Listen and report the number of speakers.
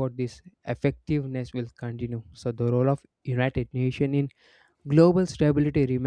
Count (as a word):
one